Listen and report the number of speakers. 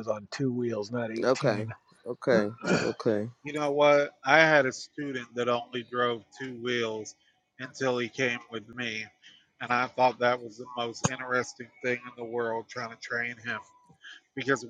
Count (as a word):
three